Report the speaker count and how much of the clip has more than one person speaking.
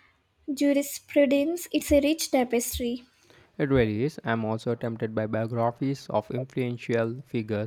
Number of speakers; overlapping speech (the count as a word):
two, no overlap